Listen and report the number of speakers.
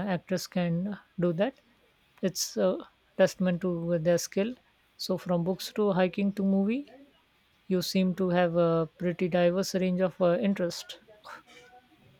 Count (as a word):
one